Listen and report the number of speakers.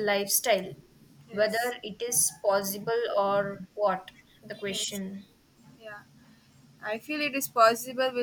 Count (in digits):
2